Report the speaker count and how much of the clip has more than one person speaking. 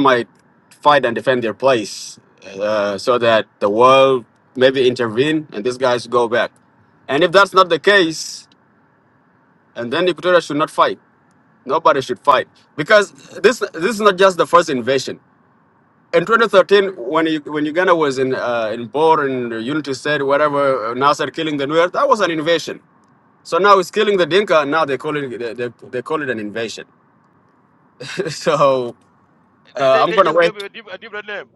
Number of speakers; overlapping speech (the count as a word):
two, about 3%